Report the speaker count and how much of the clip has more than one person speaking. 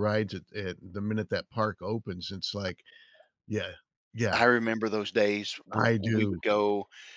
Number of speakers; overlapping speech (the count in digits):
2, about 11%